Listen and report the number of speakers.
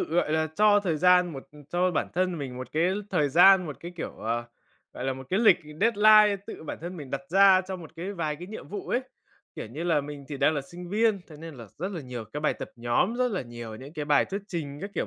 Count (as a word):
one